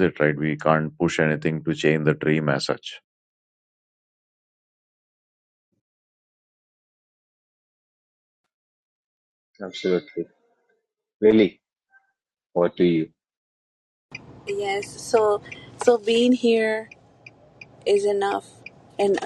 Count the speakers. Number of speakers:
3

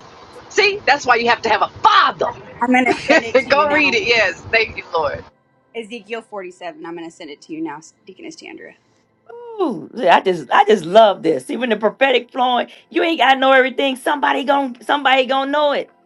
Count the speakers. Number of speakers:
3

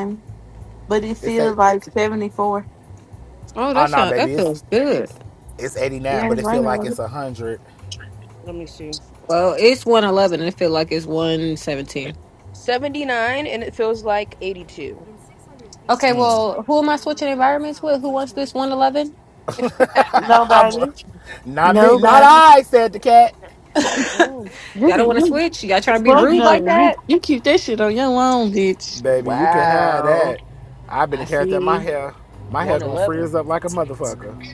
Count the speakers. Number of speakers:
4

